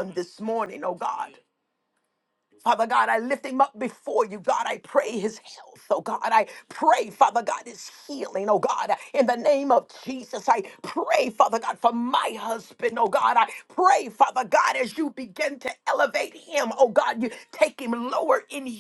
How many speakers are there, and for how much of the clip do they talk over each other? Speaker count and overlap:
one, no overlap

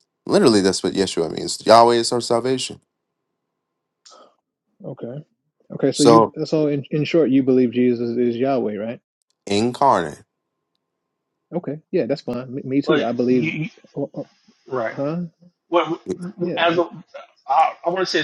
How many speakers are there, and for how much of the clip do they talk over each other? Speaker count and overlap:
three, about 7%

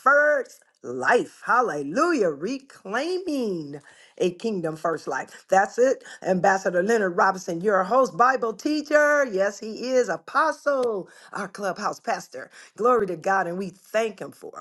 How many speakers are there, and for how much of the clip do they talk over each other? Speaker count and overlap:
one, no overlap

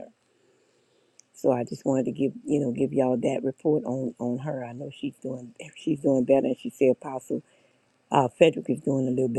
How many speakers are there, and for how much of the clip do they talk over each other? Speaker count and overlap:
one, no overlap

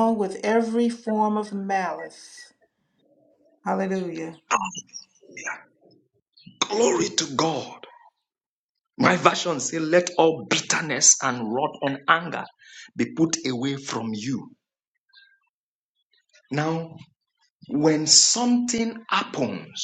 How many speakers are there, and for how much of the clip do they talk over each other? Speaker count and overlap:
two, no overlap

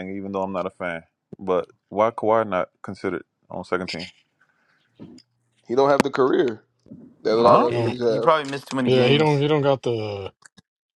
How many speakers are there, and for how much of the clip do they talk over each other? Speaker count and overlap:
four, about 12%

